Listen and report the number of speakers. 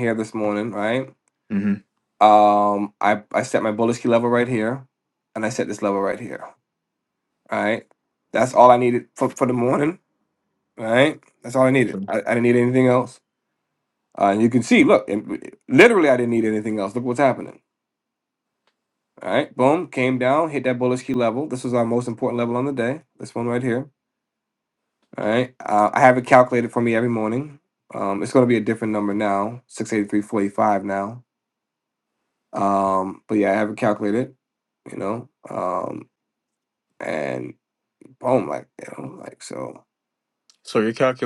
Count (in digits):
2